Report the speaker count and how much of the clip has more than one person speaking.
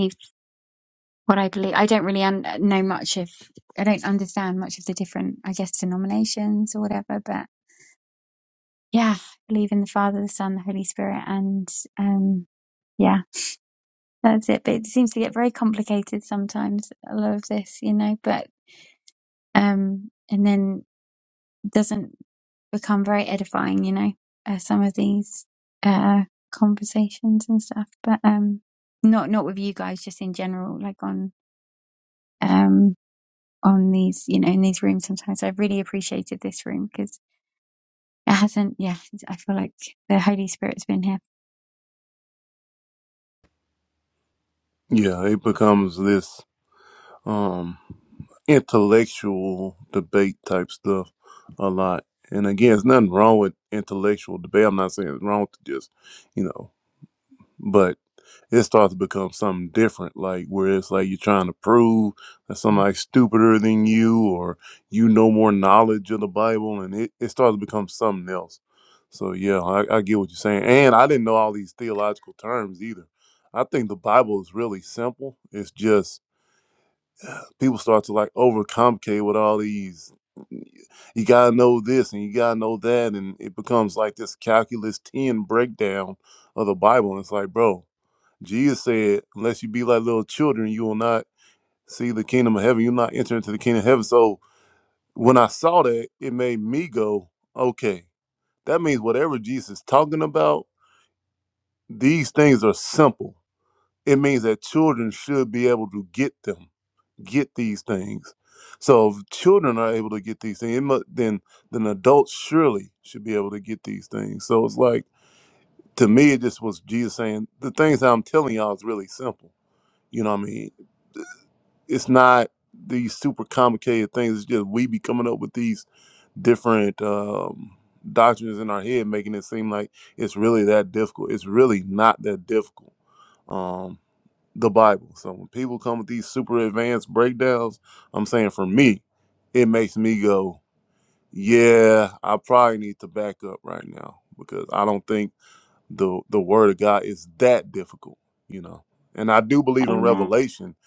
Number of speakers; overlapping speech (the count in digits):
2, under 1%